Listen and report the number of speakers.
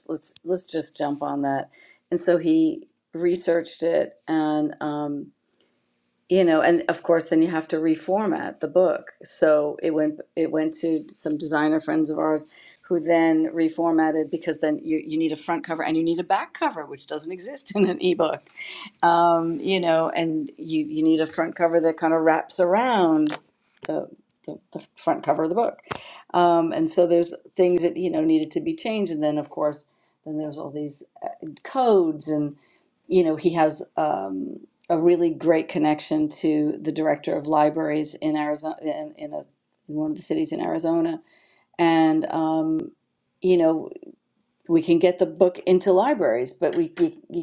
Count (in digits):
1